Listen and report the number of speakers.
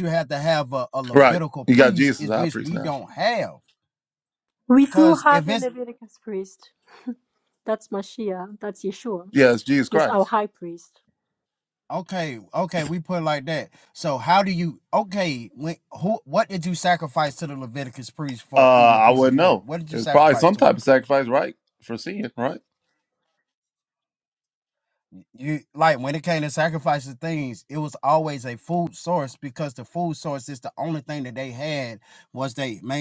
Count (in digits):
3